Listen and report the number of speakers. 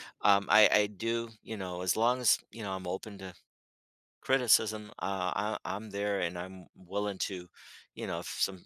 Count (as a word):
one